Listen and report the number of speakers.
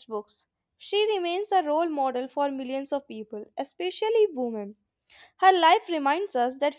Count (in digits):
1